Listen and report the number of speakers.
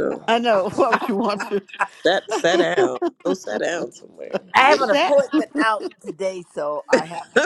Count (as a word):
three